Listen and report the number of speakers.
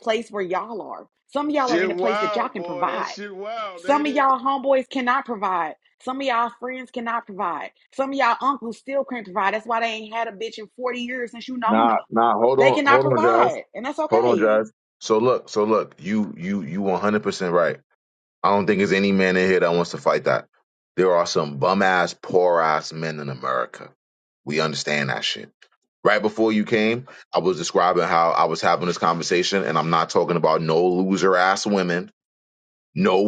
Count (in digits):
3